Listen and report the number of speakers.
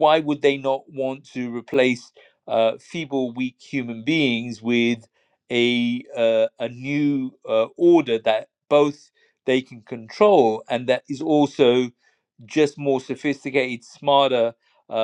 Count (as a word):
one